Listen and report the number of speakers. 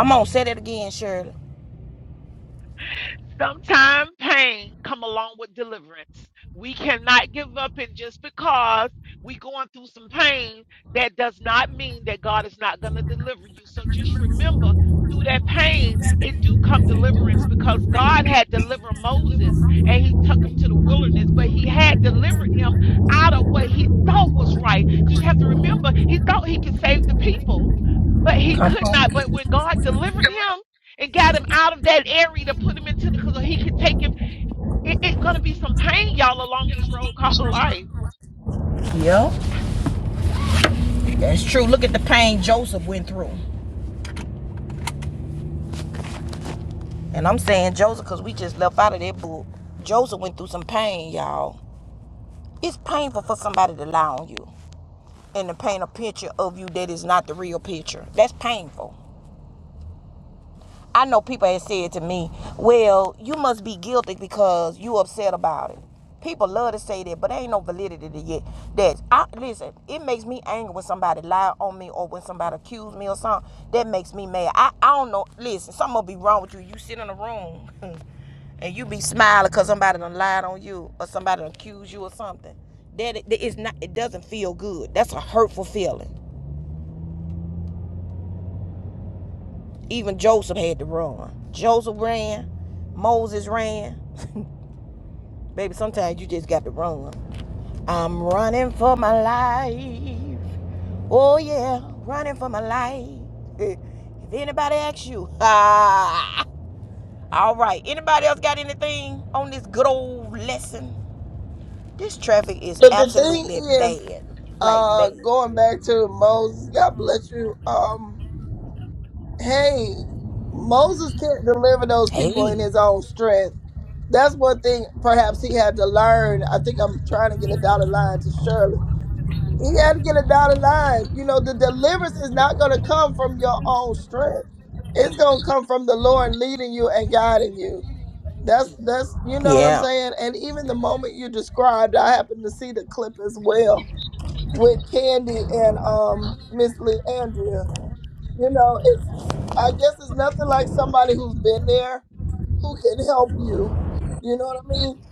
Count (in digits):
3